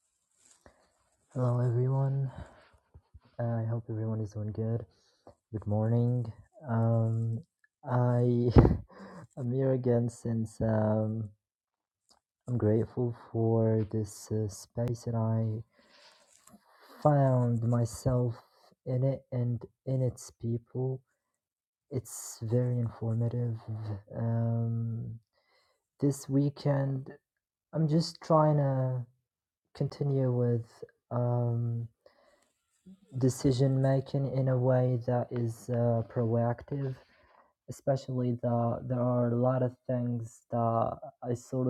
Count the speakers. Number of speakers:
1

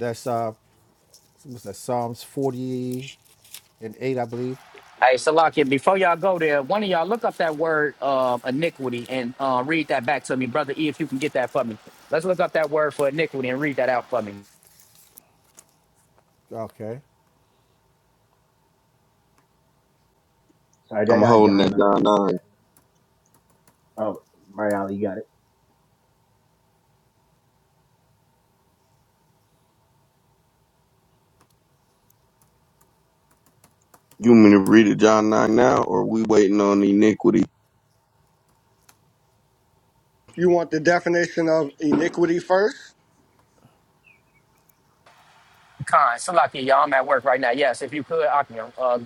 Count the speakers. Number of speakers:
5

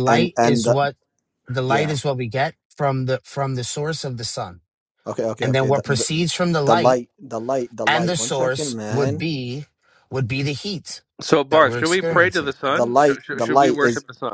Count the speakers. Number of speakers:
3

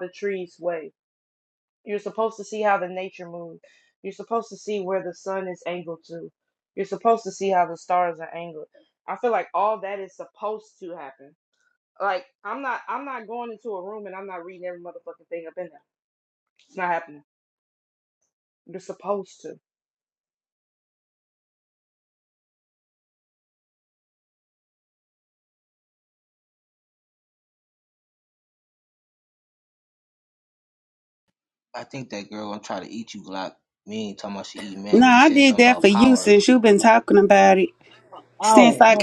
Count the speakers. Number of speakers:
3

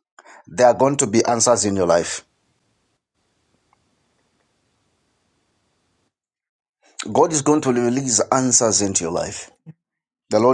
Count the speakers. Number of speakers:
1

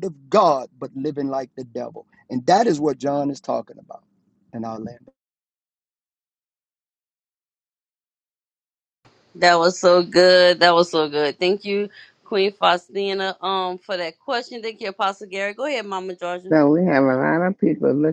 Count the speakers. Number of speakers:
3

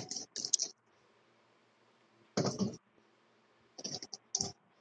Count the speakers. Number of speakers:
0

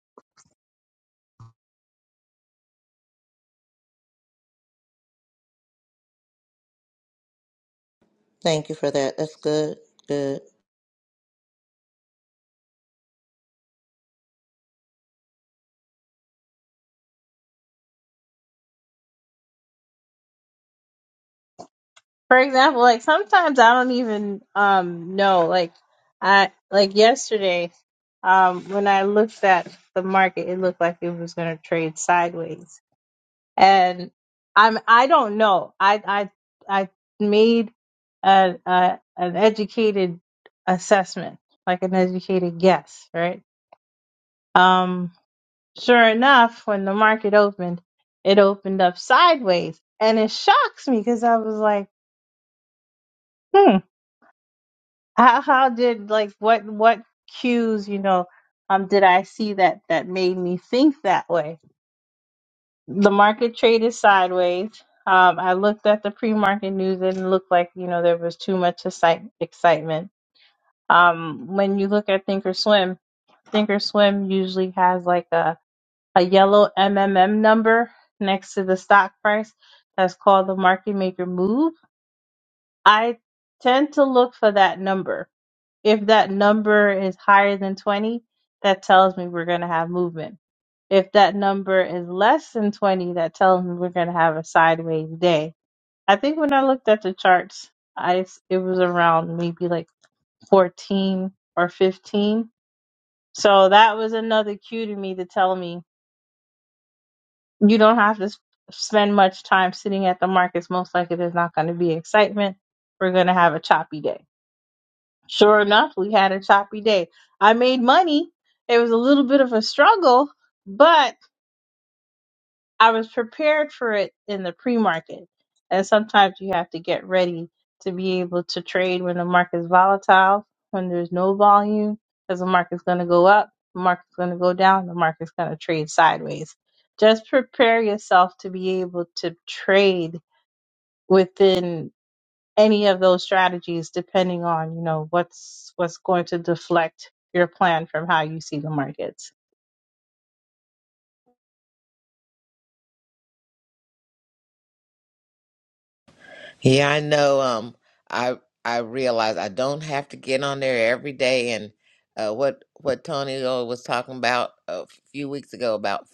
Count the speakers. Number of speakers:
3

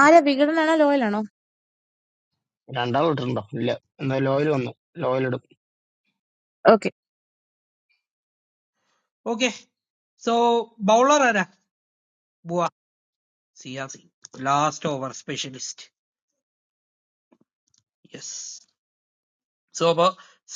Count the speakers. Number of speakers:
3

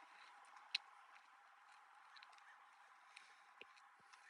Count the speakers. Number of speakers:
0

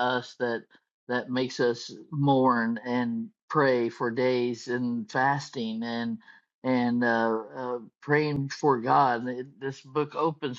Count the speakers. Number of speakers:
1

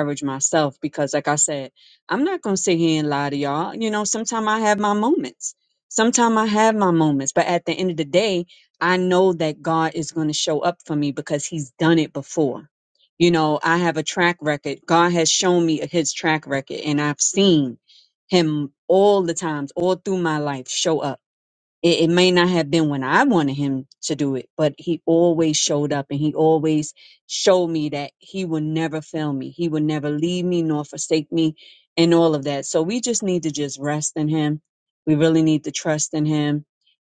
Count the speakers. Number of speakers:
1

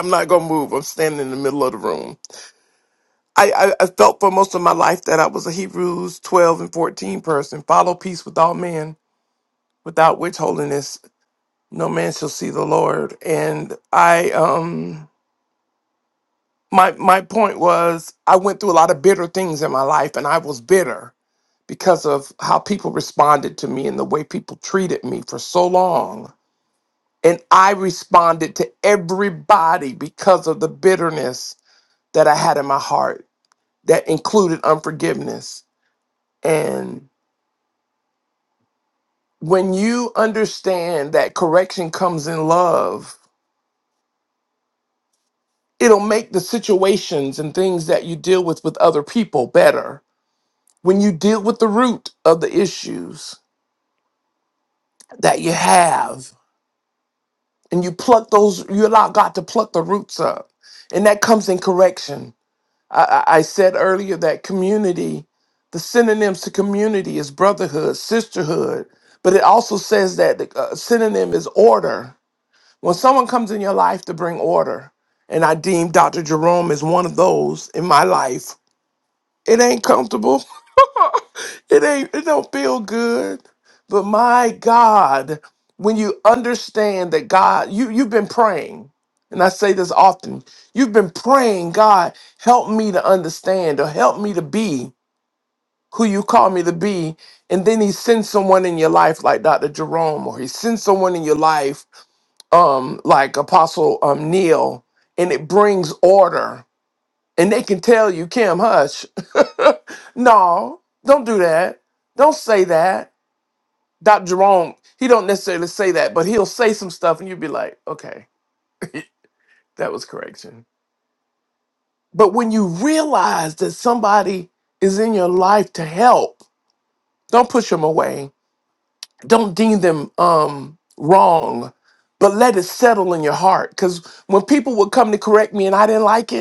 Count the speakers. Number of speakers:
1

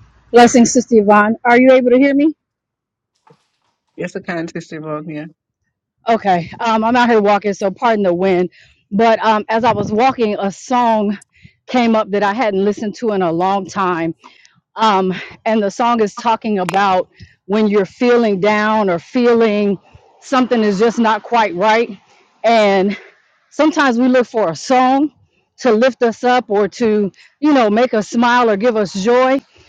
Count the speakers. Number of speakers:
2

